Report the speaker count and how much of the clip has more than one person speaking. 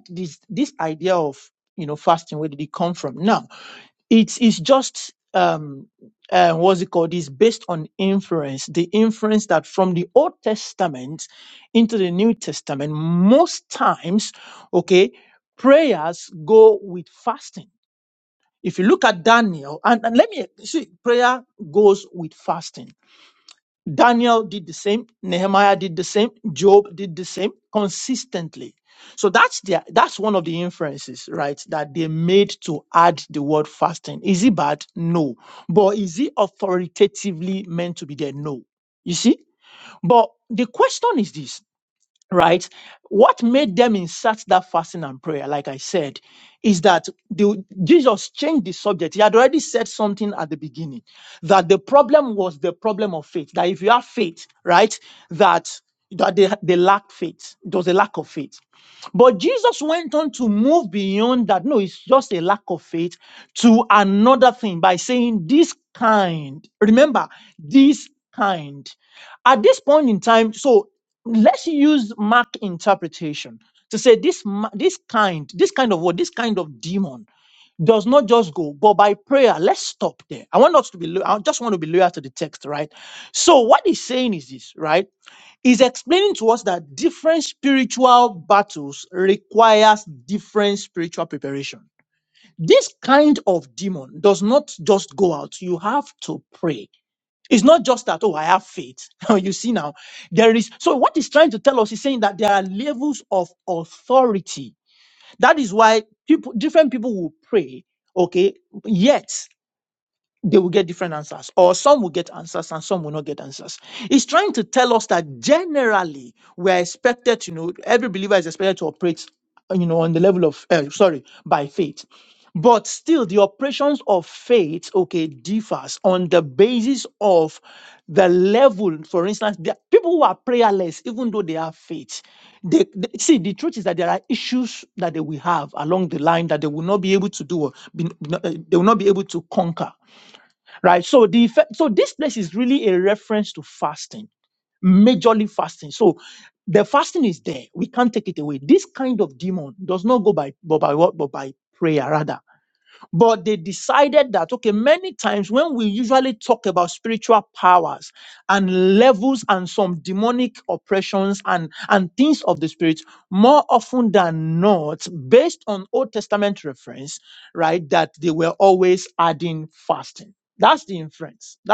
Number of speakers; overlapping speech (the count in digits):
1, no overlap